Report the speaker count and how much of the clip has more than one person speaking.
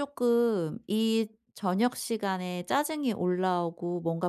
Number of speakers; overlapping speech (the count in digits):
1, no overlap